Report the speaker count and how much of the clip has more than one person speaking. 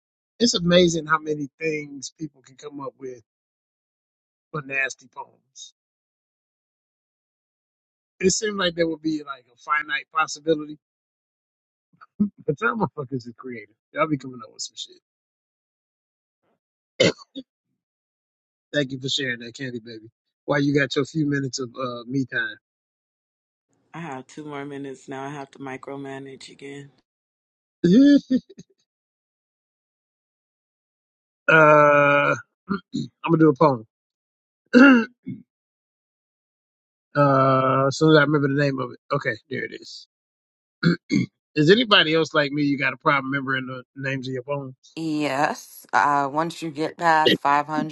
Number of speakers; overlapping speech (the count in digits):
3, no overlap